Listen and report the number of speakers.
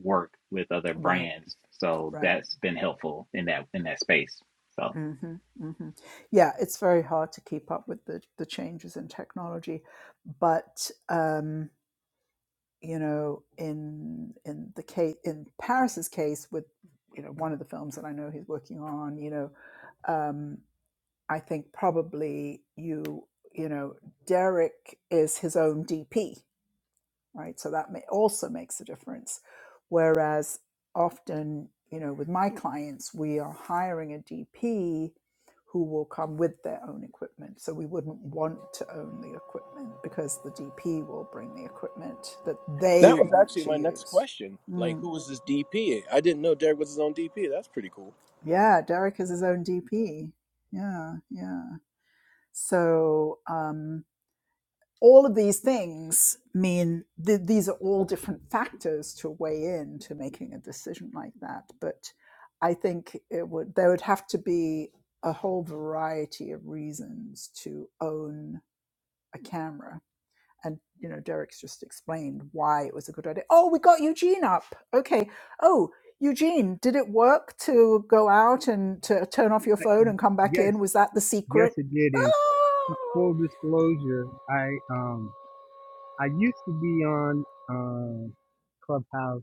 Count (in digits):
4